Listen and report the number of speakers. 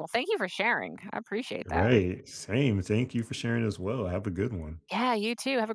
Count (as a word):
two